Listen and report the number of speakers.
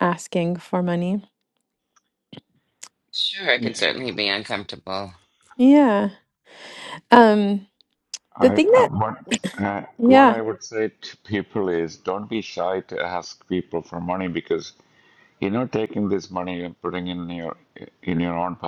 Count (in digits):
3